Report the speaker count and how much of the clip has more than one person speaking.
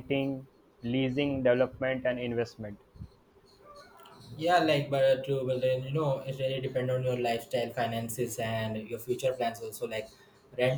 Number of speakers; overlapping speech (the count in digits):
2, no overlap